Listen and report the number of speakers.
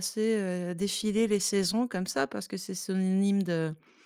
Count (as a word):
one